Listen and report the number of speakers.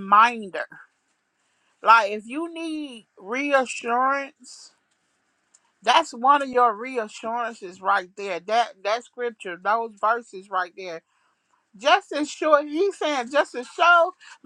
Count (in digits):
1